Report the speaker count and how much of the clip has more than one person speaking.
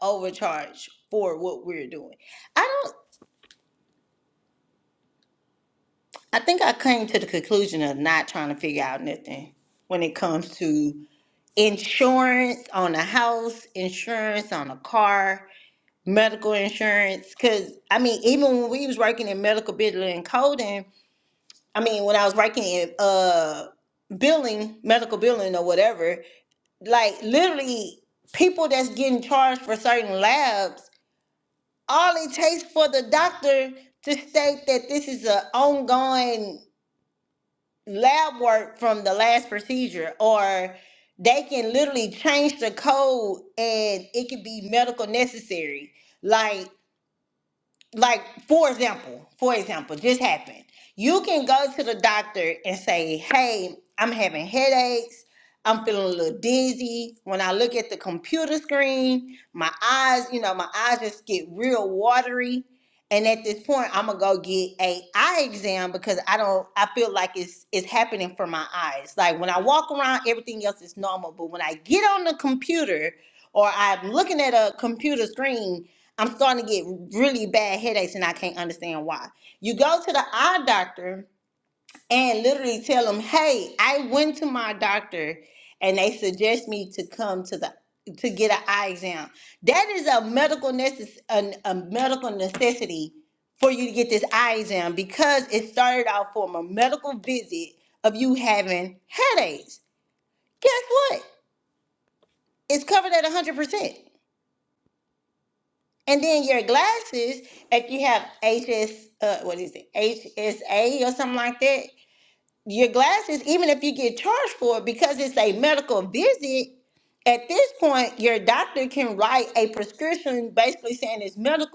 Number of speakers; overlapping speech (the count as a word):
one, no overlap